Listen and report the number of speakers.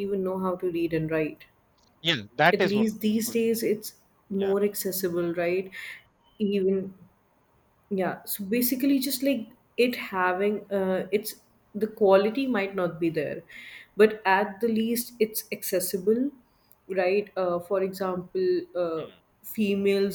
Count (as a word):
two